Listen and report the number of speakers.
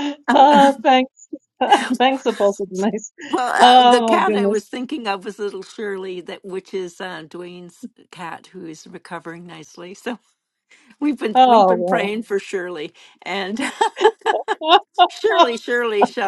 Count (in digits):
2